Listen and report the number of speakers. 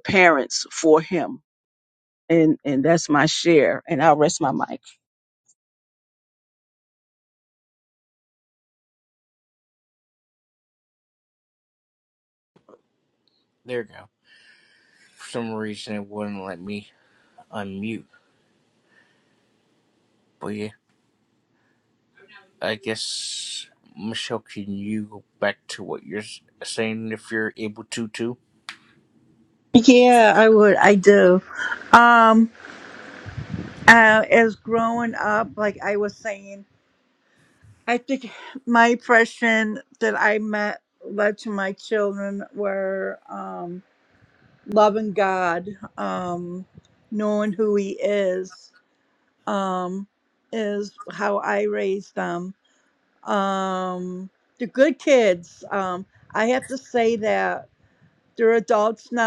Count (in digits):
3